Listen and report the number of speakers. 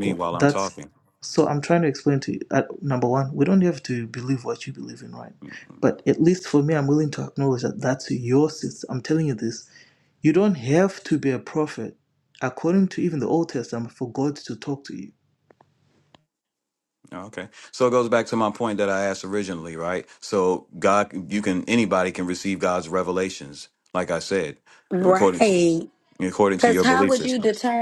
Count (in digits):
3